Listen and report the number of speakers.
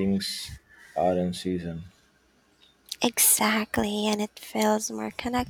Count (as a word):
two